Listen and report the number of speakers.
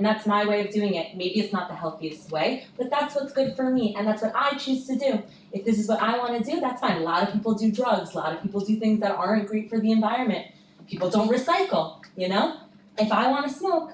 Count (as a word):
one